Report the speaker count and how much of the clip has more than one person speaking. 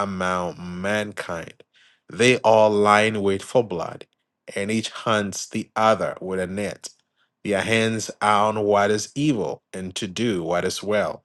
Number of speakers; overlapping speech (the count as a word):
one, no overlap